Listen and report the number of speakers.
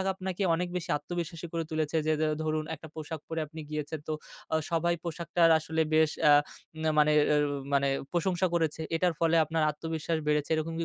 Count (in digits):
1